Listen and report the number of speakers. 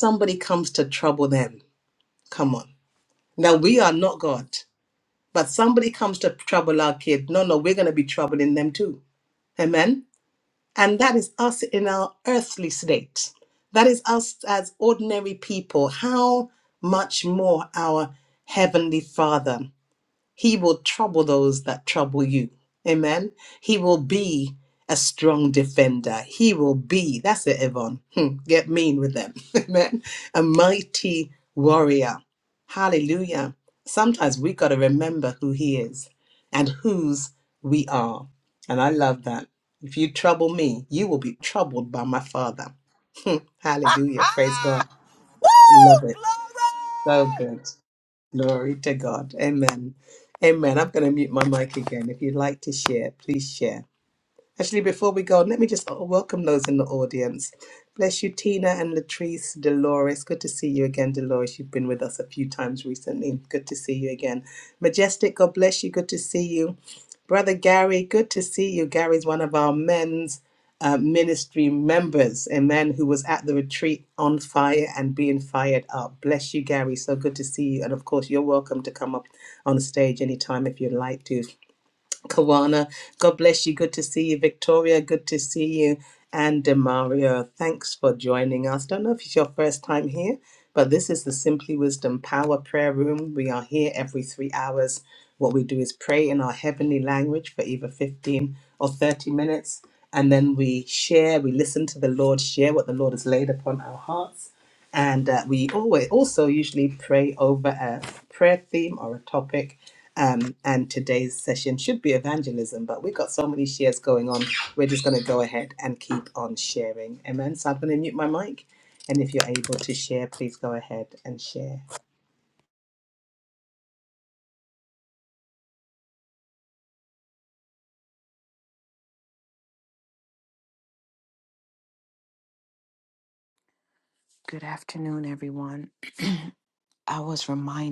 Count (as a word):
three